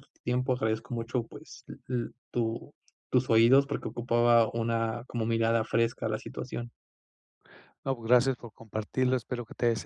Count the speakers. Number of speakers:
2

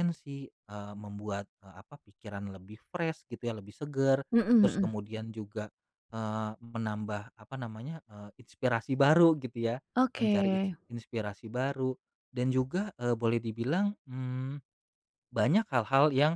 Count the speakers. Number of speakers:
2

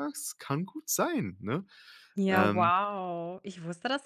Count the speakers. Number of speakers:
2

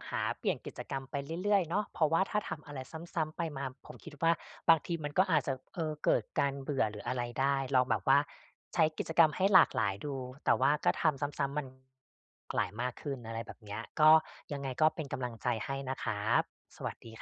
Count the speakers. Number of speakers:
1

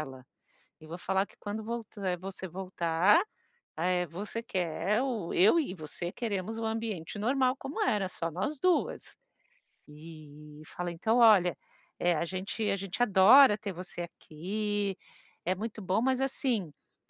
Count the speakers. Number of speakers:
1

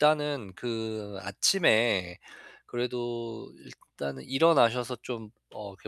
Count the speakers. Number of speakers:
1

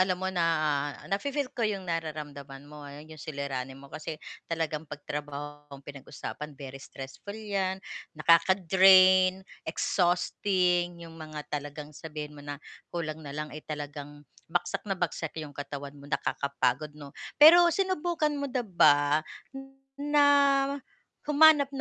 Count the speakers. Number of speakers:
1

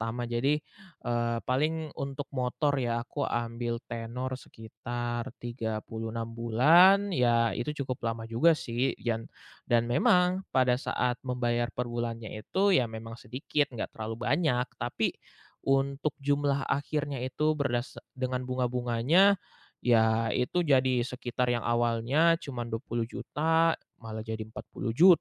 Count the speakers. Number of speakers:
1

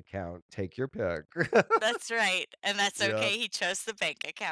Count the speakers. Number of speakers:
2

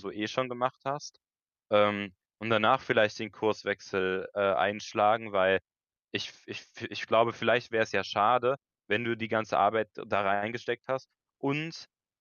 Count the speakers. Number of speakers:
1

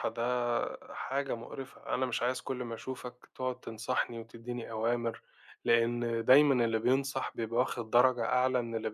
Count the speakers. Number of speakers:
1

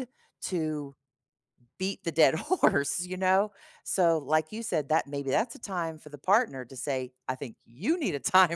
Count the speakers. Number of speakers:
1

